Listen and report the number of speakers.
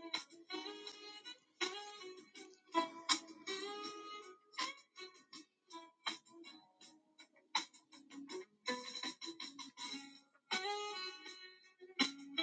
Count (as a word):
zero